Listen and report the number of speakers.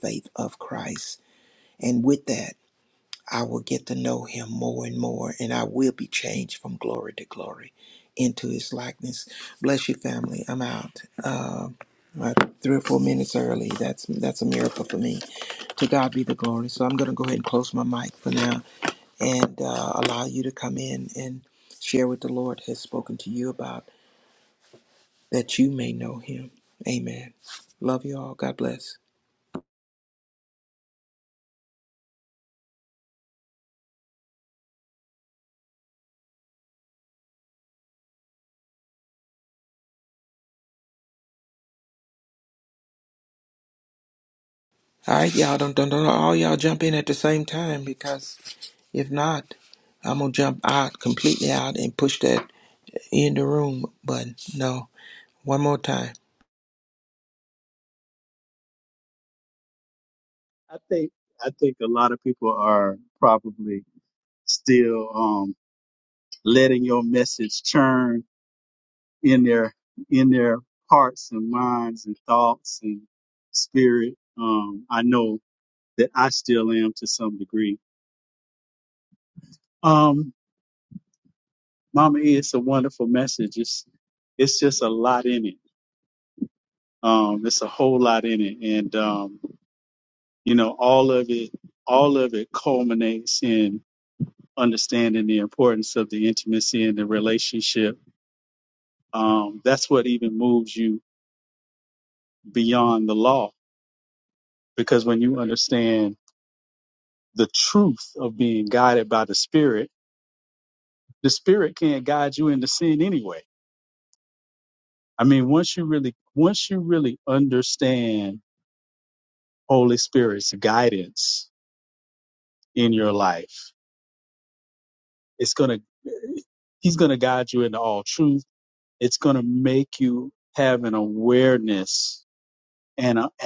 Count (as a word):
two